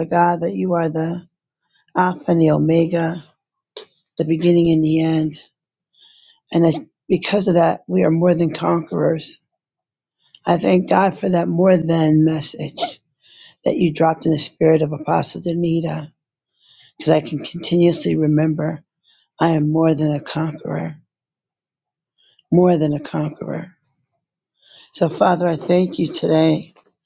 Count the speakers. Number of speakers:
1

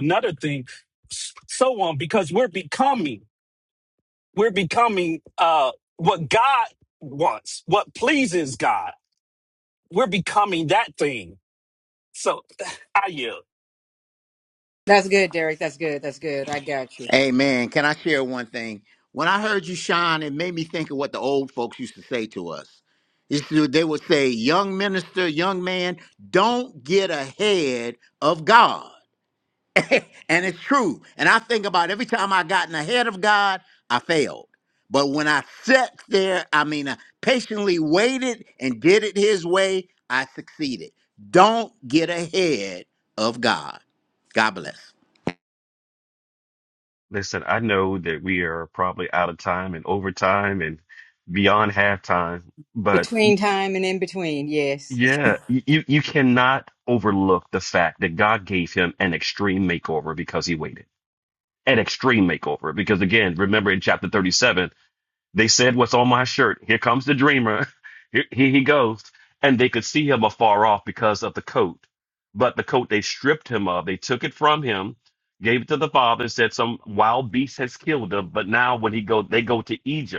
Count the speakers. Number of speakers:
4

